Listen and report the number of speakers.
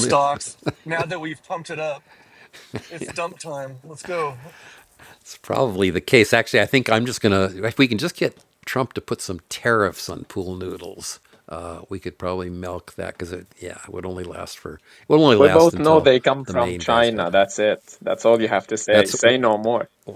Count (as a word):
three